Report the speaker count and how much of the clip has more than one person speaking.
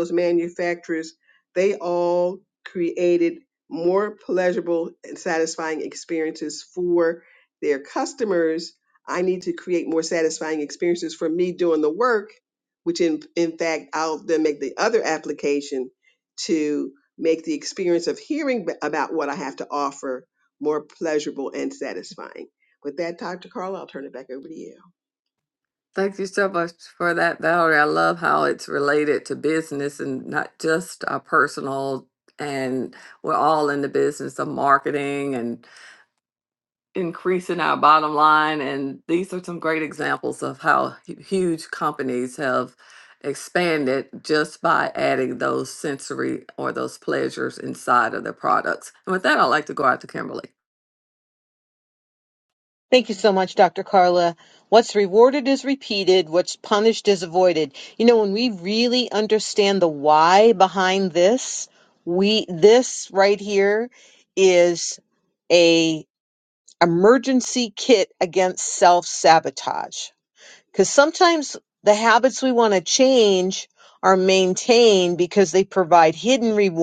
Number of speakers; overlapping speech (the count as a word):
three, no overlap